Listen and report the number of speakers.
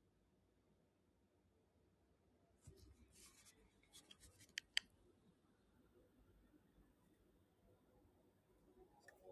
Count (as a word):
zero